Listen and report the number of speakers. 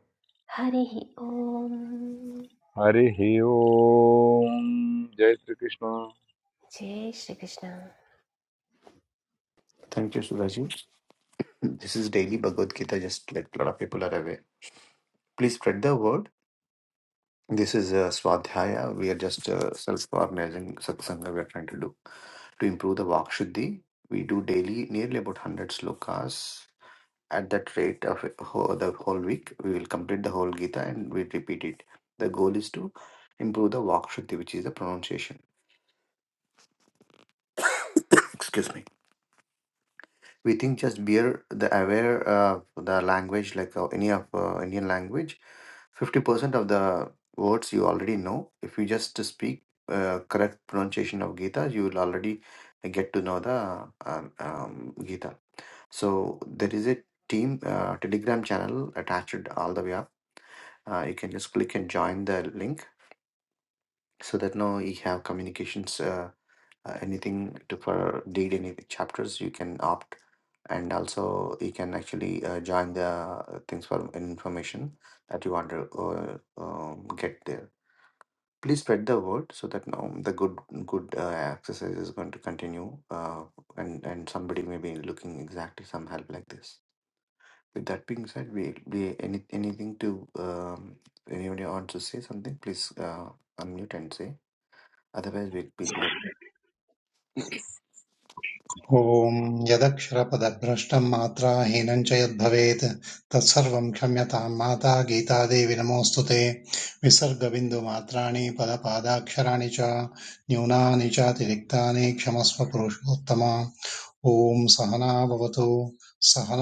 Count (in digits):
4